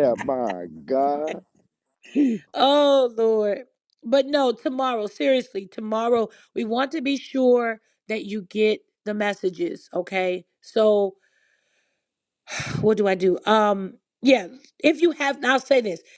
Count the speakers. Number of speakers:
2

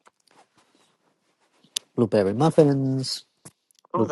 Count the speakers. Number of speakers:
1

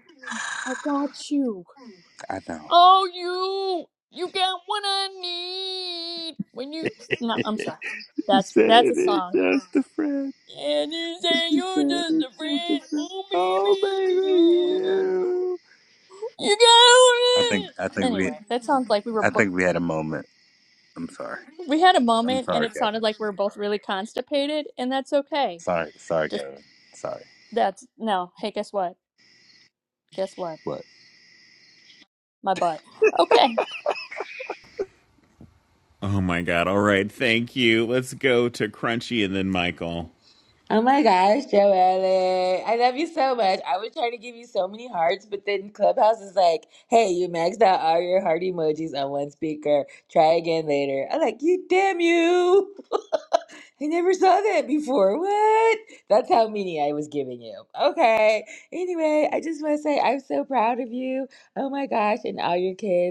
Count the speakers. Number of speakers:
4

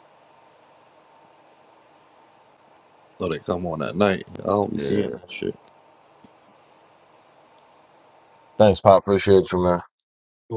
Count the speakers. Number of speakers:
2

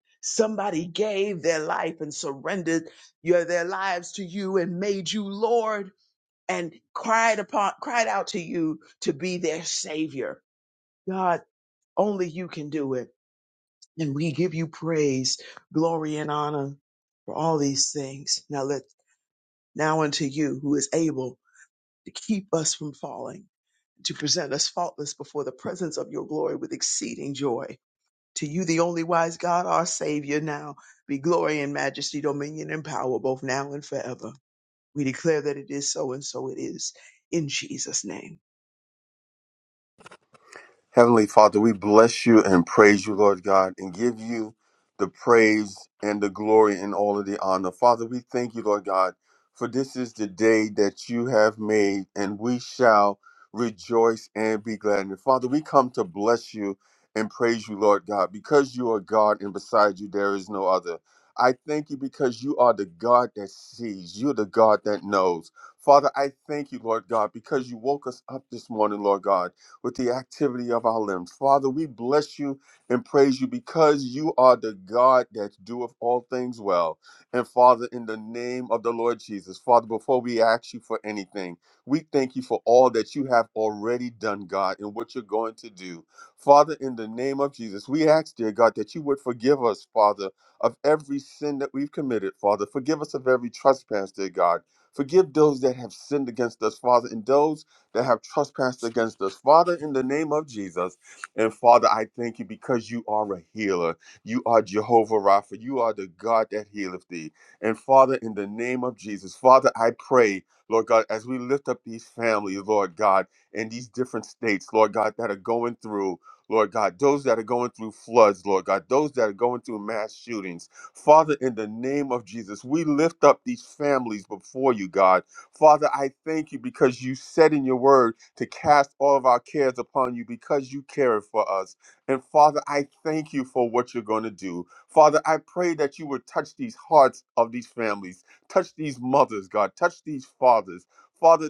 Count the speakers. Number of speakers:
2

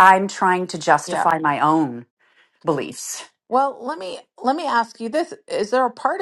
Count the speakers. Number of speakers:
2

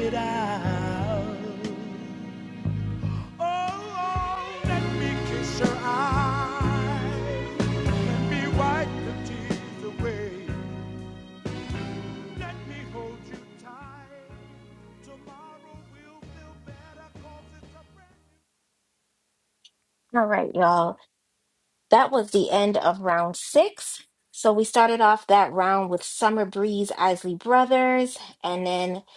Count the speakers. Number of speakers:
2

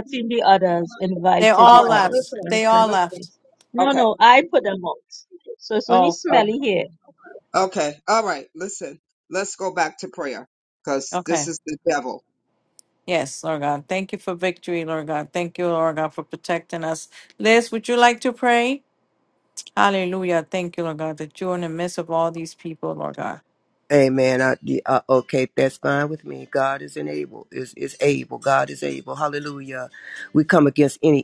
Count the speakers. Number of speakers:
4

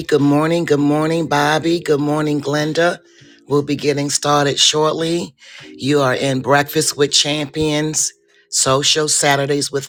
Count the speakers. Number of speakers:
1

